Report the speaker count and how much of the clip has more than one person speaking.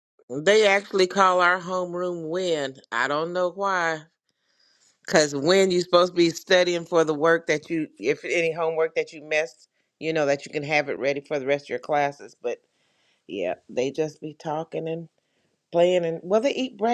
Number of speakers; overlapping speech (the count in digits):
1, no overlap